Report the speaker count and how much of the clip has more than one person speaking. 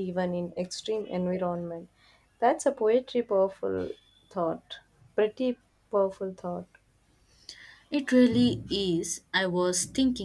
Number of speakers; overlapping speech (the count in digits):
2, no overlap